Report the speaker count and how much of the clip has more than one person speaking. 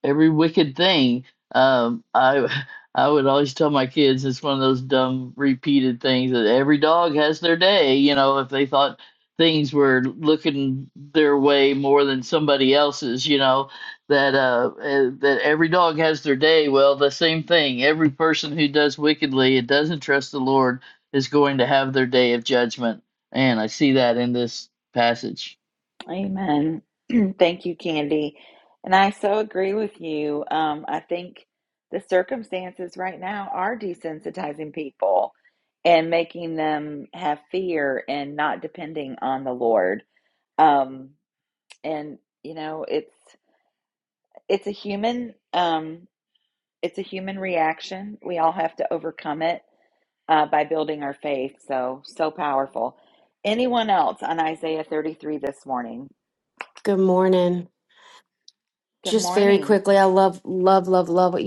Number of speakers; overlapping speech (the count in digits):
3, about 1%